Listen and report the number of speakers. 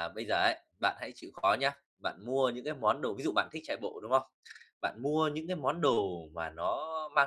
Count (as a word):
one